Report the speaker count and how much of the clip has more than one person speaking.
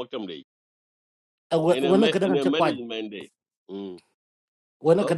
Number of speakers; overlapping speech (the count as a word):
two, about 23%